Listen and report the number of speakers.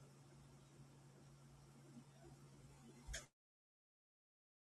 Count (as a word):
zero